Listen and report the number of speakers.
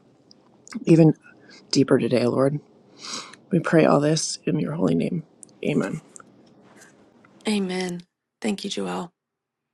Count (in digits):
2